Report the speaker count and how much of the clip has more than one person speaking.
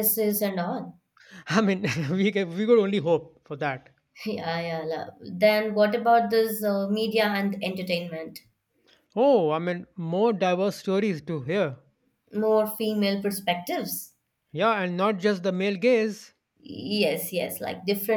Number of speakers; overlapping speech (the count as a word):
two, no overlap